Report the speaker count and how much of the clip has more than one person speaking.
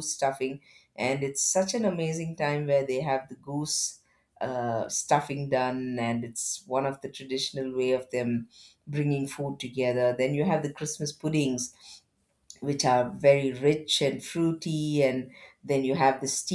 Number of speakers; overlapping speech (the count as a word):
one, no overlap